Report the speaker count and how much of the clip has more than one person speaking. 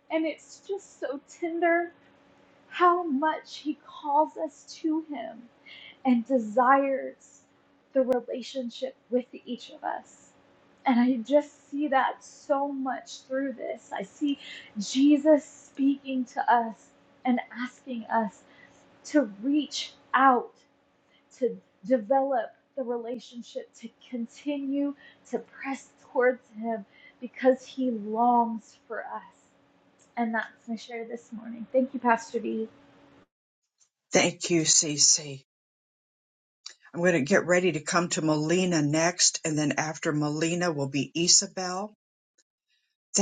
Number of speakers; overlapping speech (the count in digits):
2, no overlap